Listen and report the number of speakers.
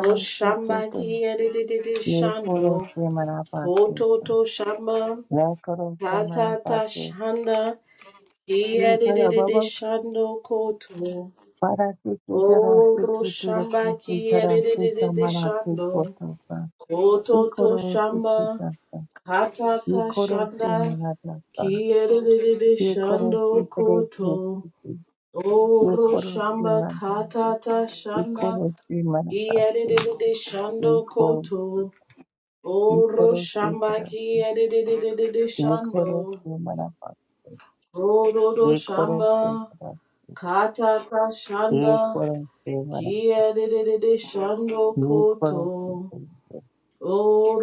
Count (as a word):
two